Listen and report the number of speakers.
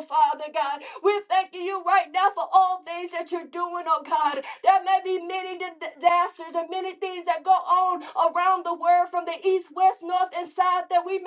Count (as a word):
one